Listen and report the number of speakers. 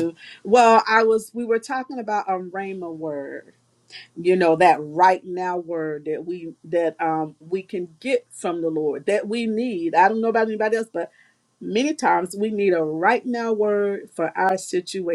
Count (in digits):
1